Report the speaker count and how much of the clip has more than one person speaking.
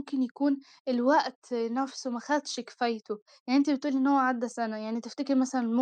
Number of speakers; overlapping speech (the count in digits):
1, no overlap